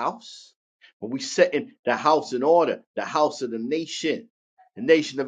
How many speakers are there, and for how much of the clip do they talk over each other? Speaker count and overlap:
1, no overlap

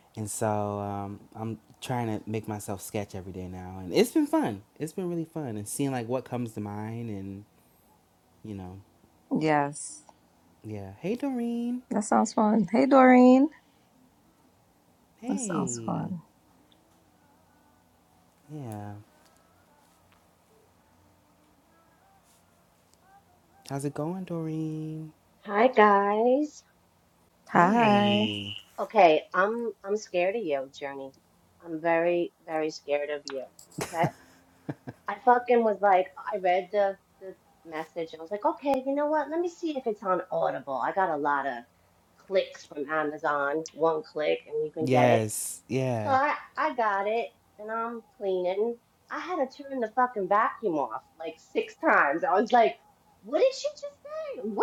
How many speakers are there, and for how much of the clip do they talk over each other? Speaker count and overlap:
3, about 4%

